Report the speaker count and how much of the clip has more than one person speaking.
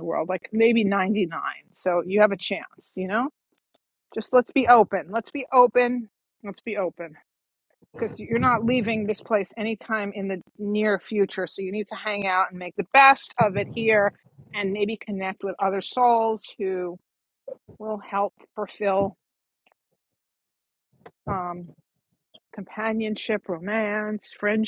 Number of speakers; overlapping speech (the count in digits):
1, no overlap